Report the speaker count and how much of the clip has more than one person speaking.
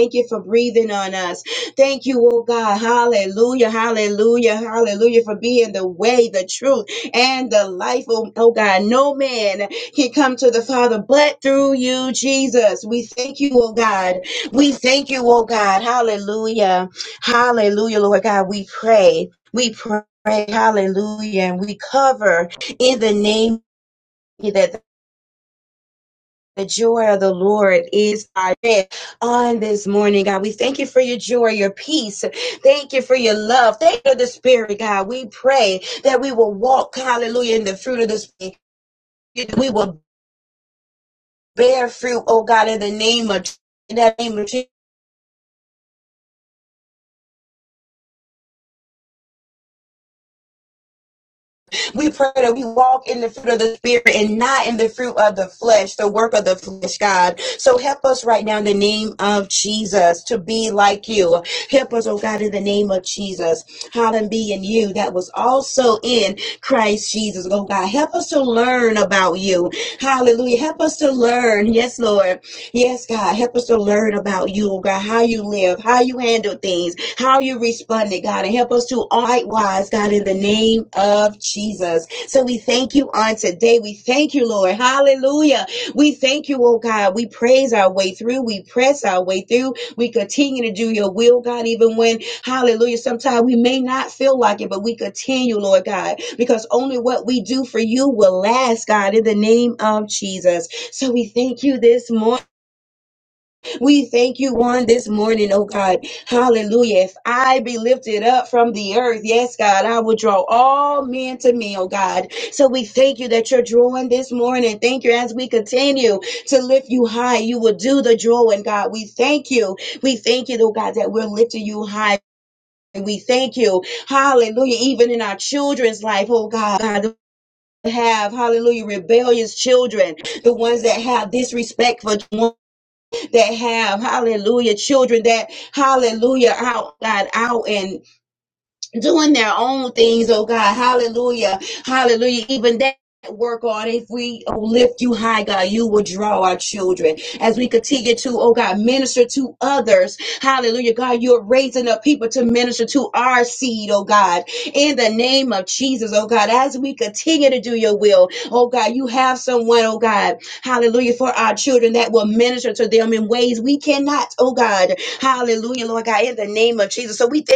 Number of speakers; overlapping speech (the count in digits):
1, no overlap